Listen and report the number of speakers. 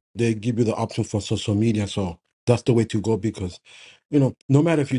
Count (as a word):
one